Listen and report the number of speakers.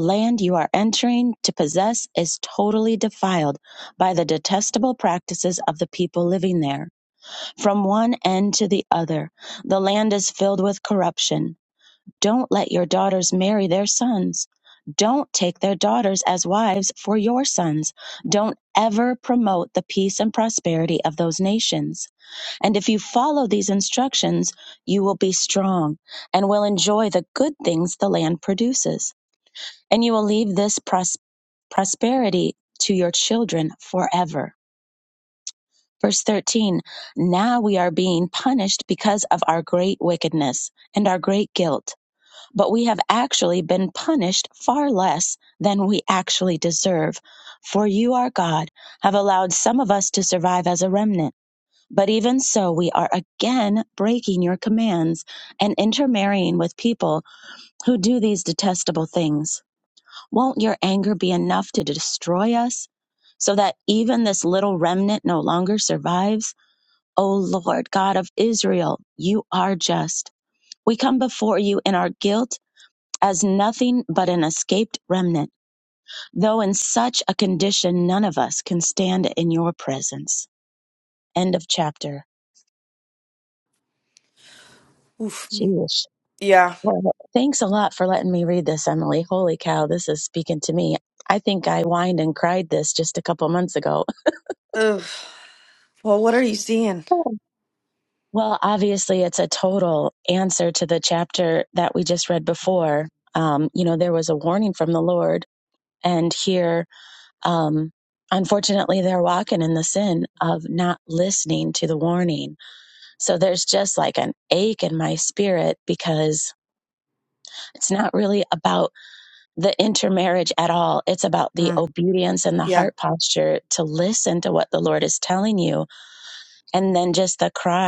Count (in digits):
2